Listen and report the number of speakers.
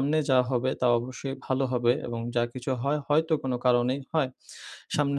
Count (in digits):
1